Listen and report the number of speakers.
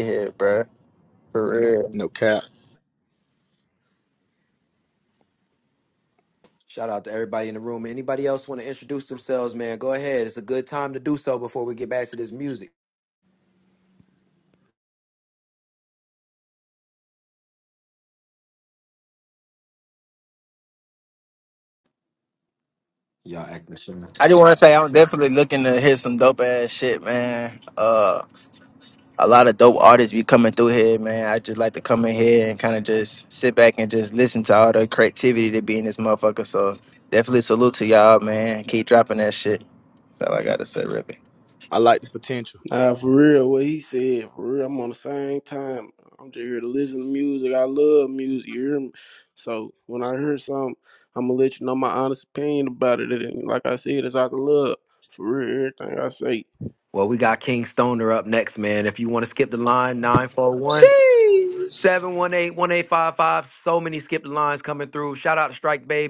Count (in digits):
5